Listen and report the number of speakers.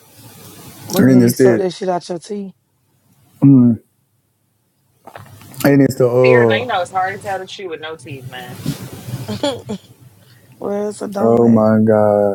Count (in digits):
3